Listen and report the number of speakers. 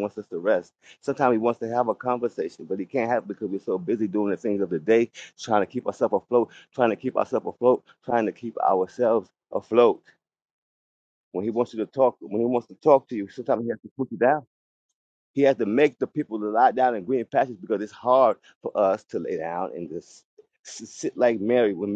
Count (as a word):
one